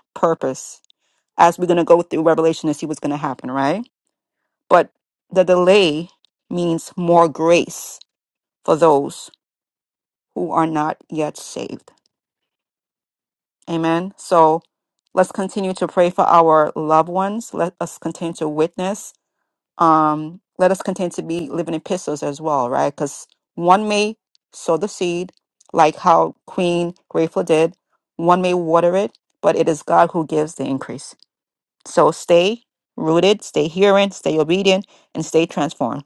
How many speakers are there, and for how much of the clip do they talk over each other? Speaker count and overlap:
1, no overlap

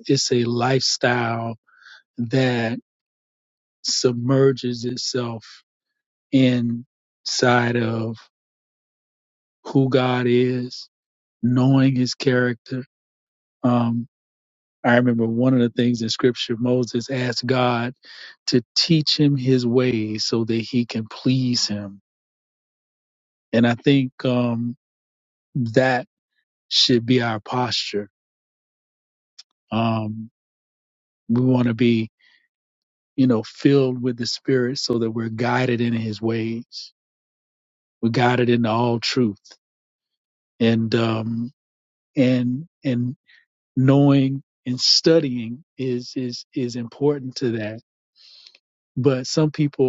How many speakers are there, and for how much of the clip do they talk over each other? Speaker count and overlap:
1, no overlap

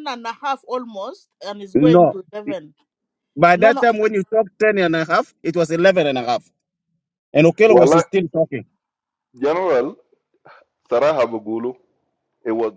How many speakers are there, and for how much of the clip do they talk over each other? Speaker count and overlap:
3, about 8%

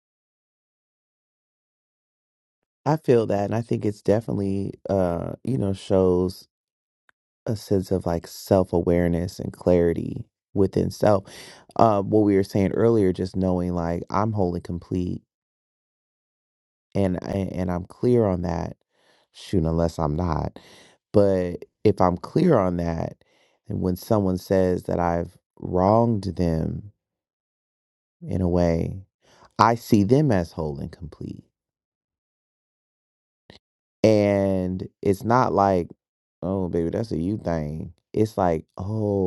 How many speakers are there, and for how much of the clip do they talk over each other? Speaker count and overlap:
1, no overlap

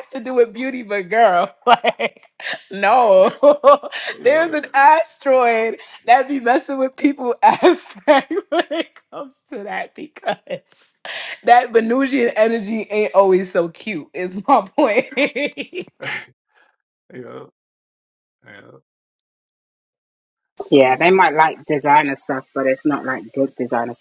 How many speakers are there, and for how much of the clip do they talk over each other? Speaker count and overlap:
3, about 2%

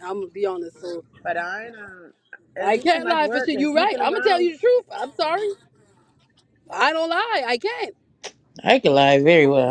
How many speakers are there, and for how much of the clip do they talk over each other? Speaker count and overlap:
3, about 19%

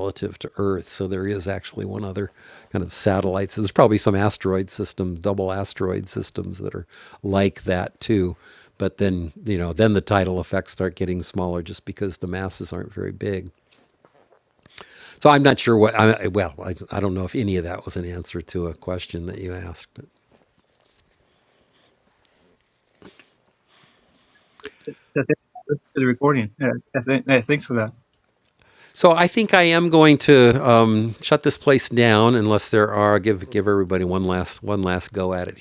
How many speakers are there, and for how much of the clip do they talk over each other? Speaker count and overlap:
2, no overlap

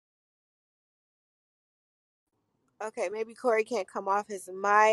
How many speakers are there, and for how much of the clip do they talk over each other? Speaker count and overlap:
1, no overlap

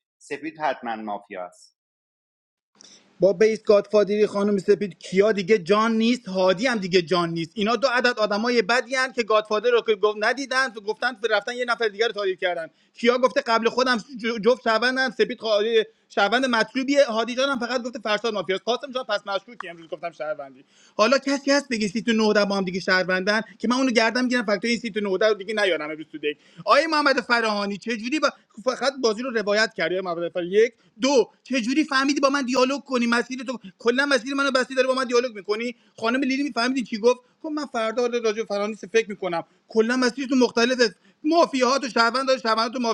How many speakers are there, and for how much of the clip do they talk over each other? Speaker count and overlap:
2, no overlap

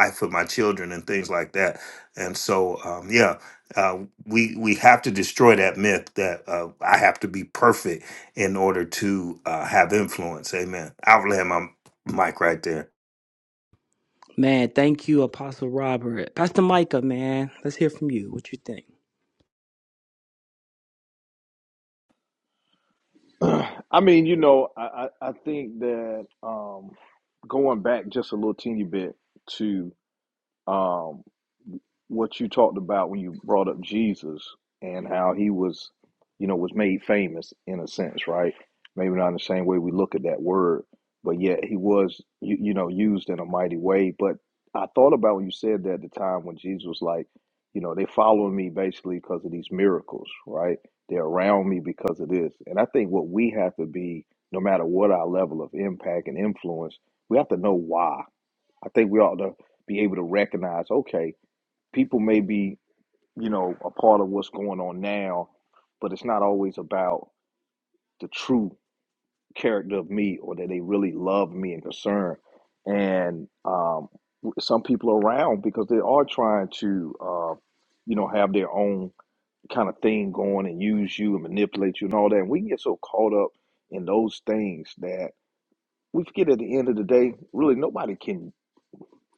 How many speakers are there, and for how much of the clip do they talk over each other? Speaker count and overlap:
3, no overlap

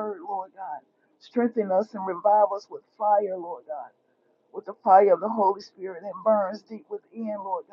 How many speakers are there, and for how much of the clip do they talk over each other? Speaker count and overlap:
1, no overlap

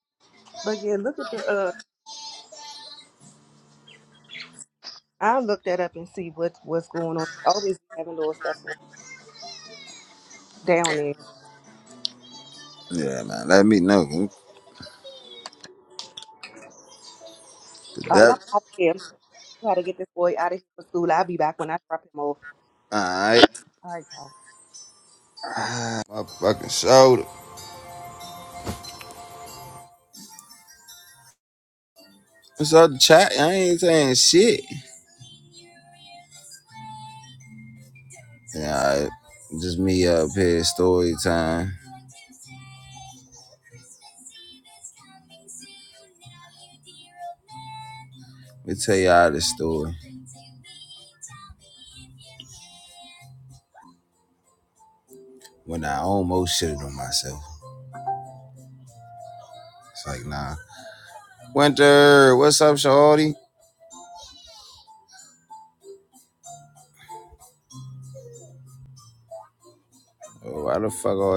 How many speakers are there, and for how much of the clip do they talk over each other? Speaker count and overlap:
2, under 1%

